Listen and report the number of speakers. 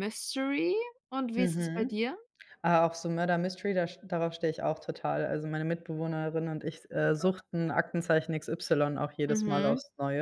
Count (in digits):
2